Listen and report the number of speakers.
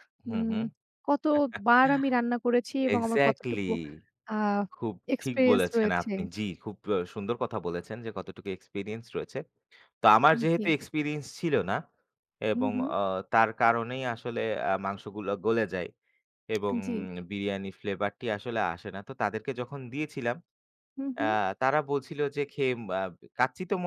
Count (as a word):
two